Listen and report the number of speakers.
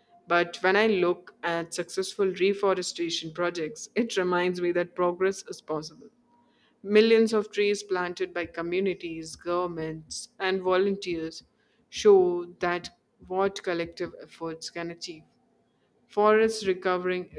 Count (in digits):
1